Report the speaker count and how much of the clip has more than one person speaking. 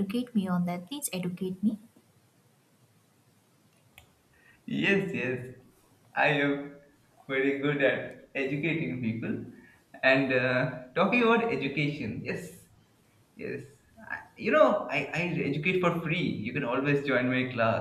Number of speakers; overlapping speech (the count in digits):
2, no overlap